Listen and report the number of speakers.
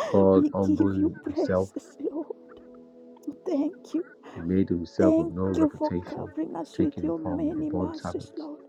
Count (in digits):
2